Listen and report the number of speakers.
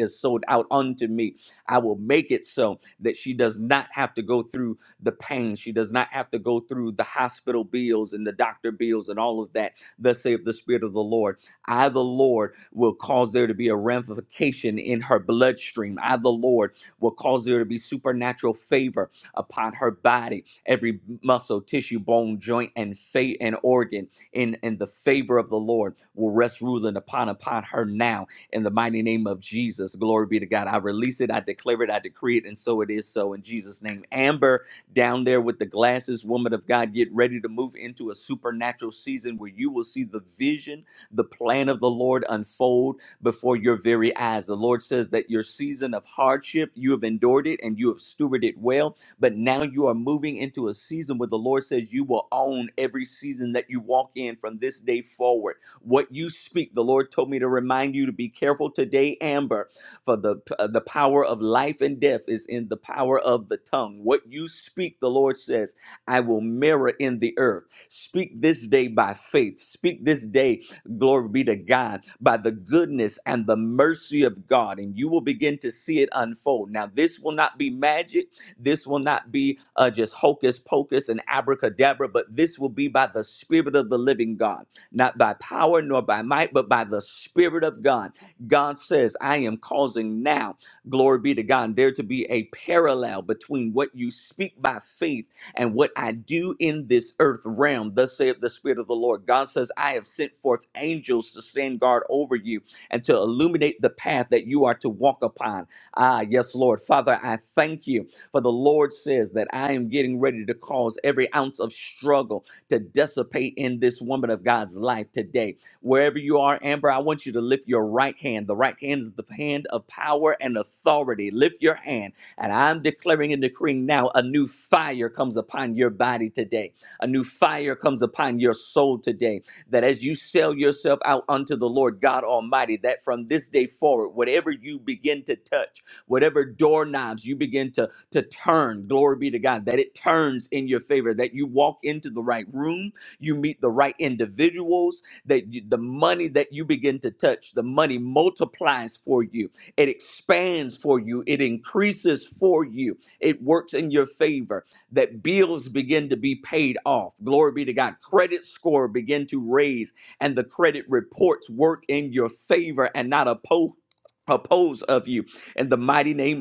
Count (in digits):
1